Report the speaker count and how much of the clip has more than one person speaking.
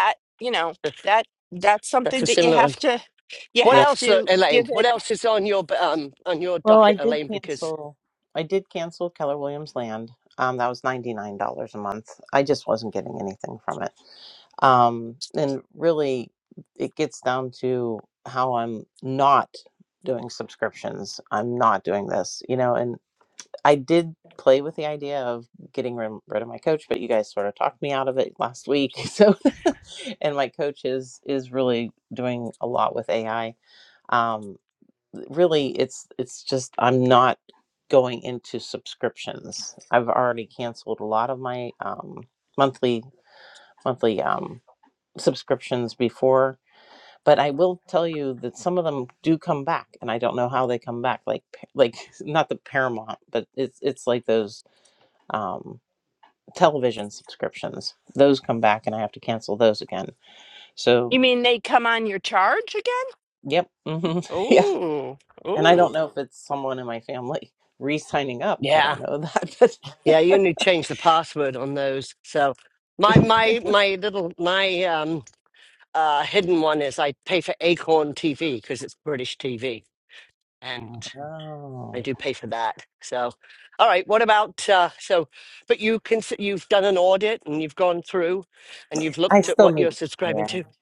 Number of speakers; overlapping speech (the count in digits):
3, about 6%